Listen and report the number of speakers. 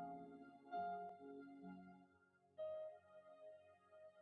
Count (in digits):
0